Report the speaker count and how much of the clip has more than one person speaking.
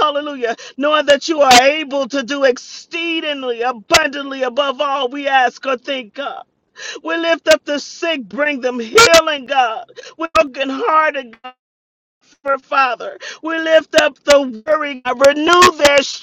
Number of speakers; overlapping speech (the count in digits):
1, no overlap